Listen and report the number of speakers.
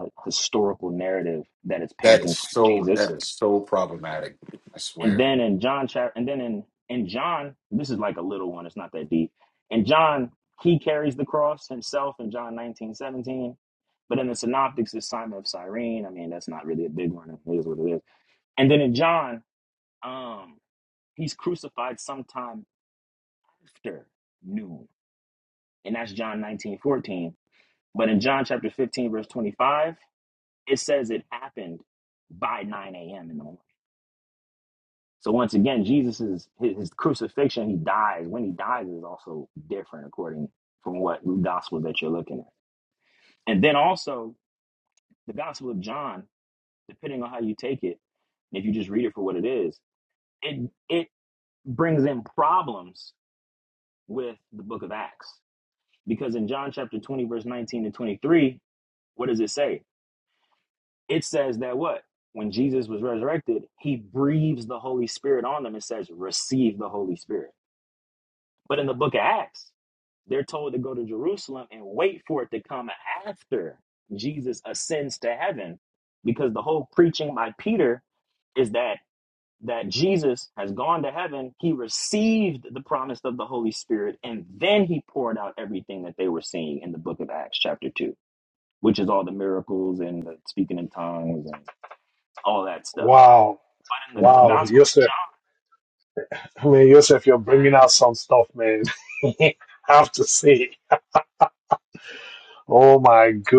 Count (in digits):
3